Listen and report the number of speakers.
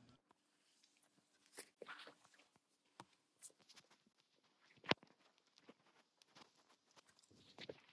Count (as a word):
zero